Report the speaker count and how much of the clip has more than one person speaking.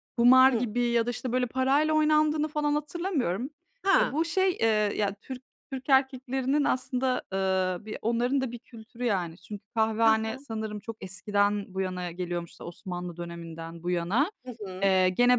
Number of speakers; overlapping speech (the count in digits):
2, about 5%